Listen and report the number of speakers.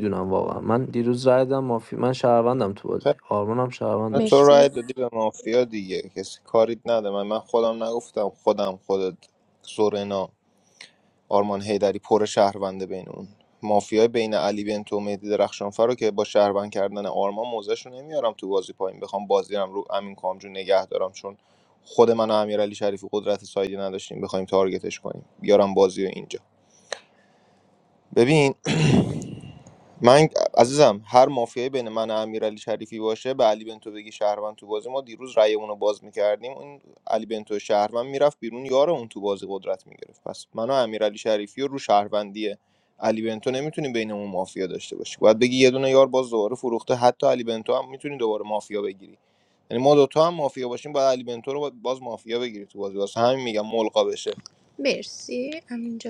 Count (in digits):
3